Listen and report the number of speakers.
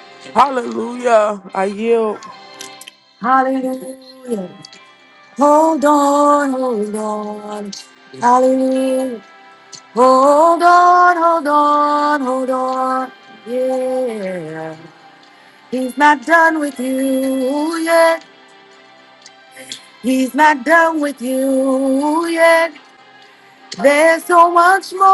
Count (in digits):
2